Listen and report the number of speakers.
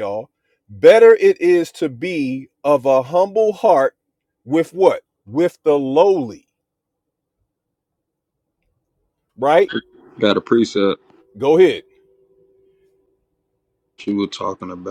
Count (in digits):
2